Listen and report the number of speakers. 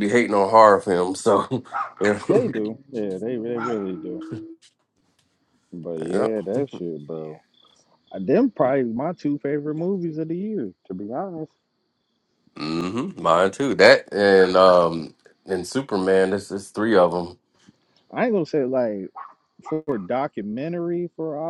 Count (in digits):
2